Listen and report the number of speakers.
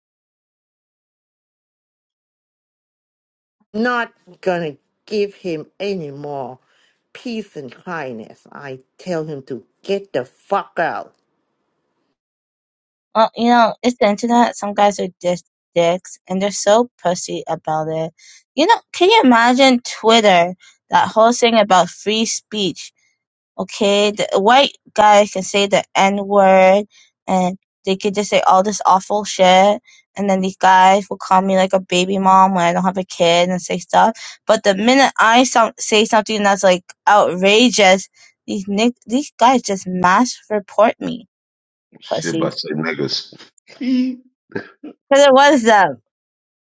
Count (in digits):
3